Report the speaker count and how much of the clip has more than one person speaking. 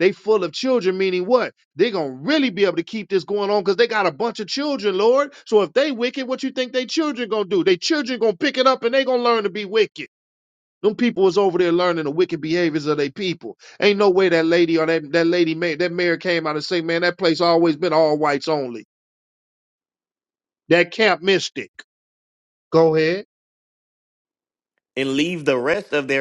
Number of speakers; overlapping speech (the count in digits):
2, no overlap